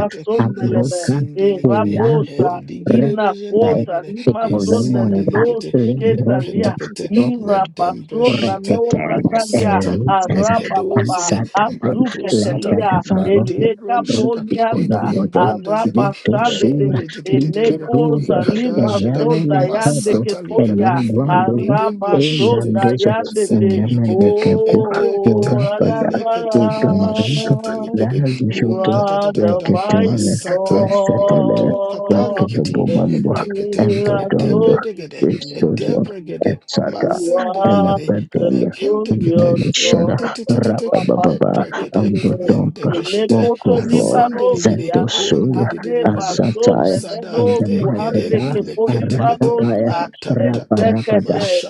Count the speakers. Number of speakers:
three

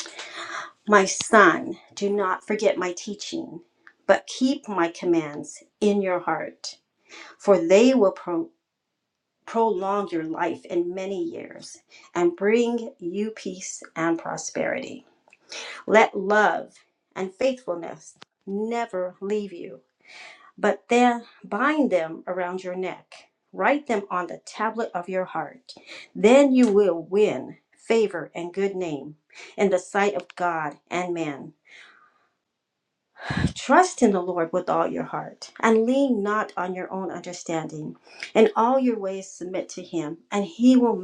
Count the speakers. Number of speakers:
one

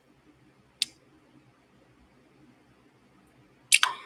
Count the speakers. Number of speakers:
zero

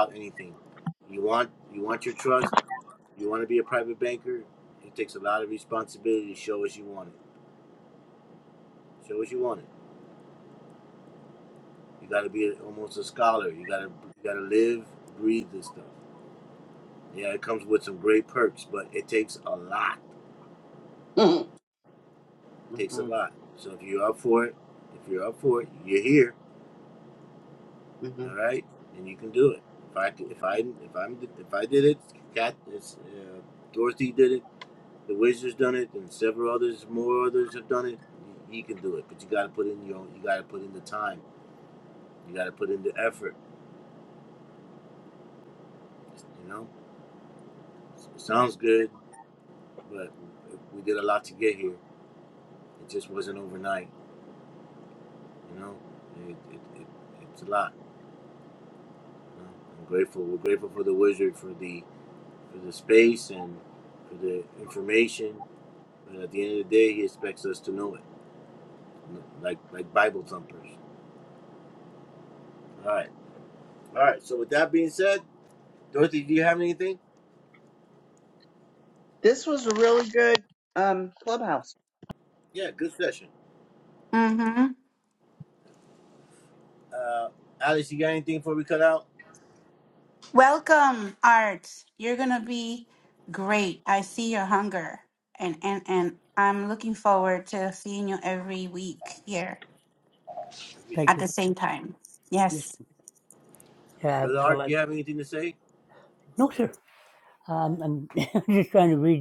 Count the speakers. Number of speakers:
four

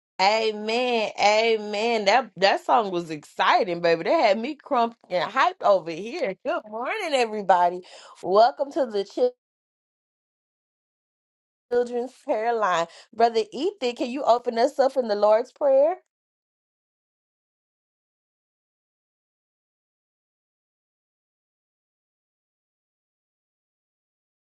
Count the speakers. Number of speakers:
one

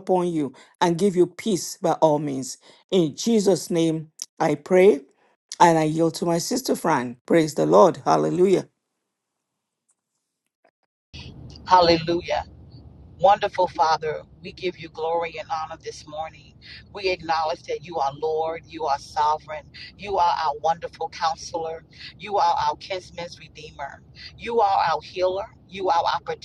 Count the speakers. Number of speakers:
two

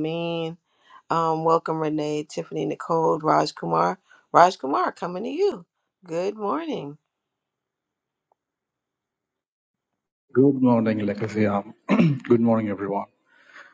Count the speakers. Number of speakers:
two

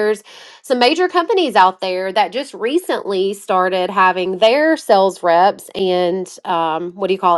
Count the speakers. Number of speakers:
one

